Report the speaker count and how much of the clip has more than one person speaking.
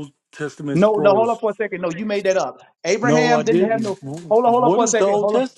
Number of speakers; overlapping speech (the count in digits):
2, about 47%